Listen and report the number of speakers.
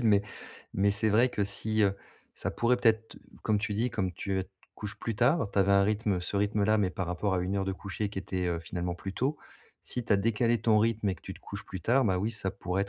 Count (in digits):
1